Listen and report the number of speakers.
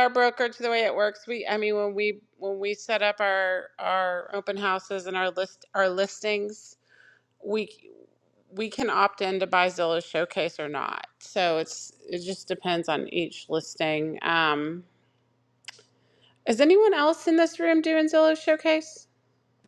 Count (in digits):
1